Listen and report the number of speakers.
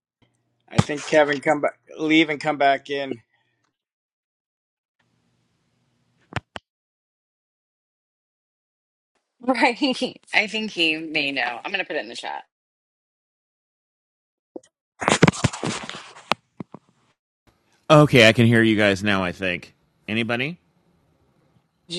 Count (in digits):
3